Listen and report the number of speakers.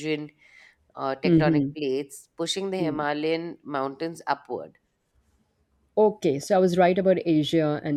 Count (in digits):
2